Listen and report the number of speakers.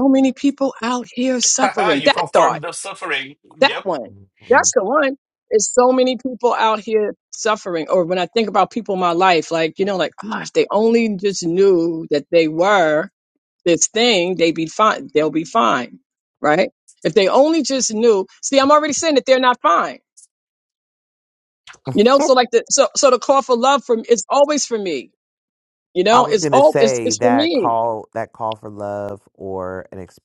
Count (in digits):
3